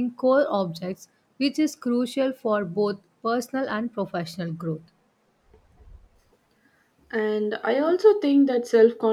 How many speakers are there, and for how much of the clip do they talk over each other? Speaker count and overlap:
2, no overlap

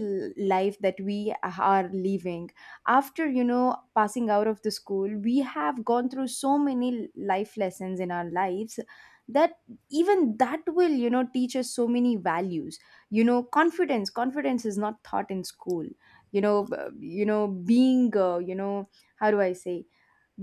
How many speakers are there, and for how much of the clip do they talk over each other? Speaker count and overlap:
1, no overlap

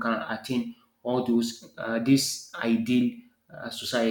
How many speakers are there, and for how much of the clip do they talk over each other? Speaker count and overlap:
1, no overlap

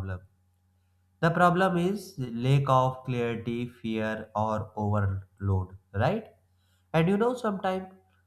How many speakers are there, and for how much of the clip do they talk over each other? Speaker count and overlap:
1, no overlap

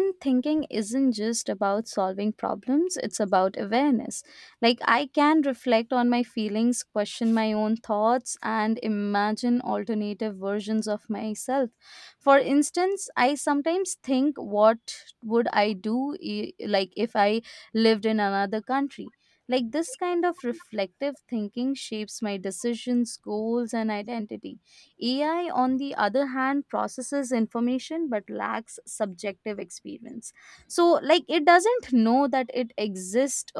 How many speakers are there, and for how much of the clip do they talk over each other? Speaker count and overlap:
1, no overlap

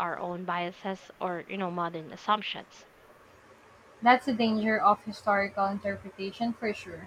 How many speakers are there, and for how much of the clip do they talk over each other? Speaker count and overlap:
2, no overlap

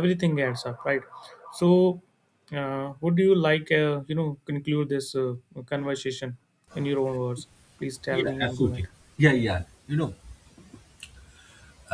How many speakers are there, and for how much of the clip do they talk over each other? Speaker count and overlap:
2, about 6%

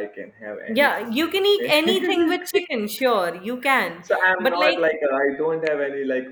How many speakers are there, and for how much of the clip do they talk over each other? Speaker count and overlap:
2, about 32%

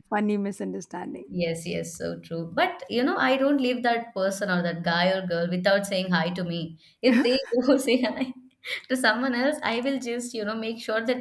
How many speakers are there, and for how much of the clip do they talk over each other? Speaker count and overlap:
2, no overlap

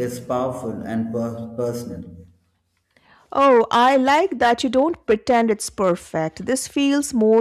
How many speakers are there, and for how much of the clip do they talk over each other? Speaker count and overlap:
2, no overlap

